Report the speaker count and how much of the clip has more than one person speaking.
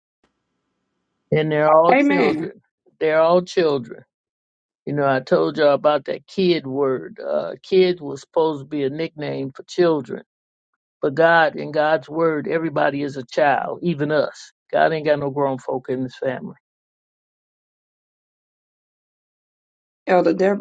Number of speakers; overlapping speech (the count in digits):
2, about 3%